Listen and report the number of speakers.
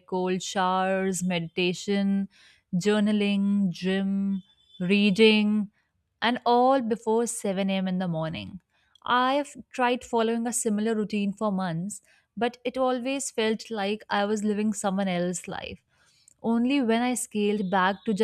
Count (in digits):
1